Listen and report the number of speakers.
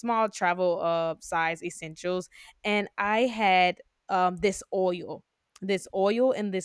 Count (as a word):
one